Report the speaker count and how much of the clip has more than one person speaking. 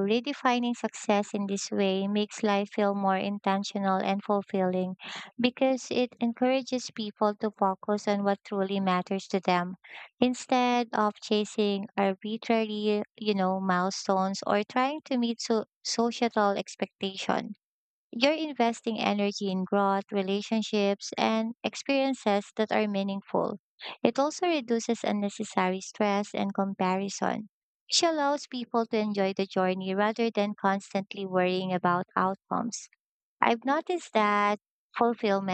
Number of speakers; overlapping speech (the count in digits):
1, no overlap